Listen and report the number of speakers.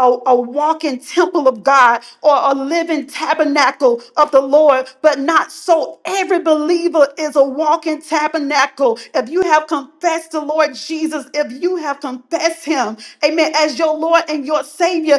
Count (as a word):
one